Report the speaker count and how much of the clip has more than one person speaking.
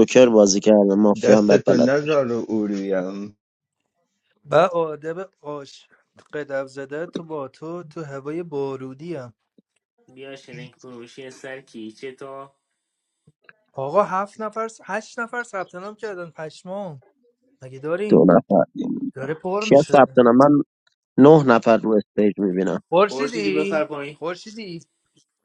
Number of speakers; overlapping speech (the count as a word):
four, about 8%